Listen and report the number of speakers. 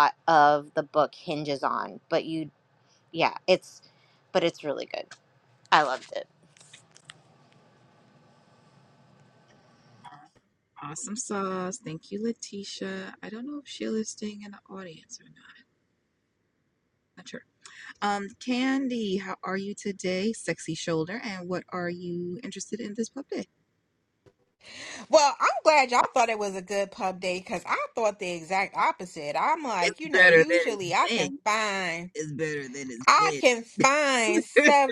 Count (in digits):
3